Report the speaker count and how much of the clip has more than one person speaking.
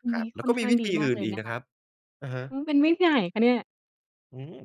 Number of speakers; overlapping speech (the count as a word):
two, about 31%